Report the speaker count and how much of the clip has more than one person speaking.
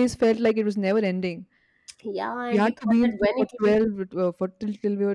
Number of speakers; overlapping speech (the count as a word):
two, about 24%